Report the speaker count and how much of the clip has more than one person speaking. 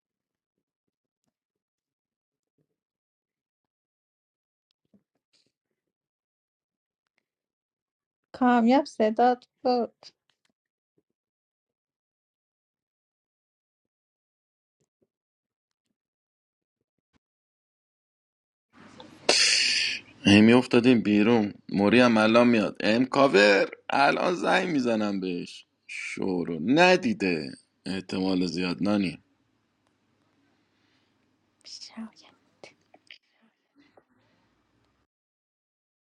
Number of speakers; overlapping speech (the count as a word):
two, no overlap